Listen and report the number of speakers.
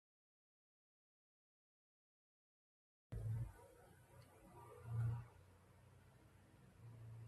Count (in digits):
0